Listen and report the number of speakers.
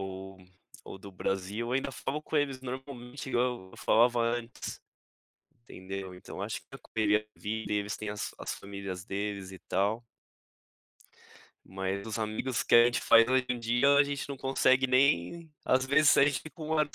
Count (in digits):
1